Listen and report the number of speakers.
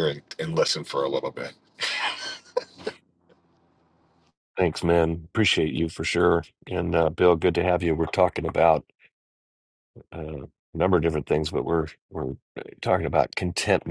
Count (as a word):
two